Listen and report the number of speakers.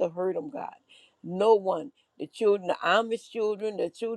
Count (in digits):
1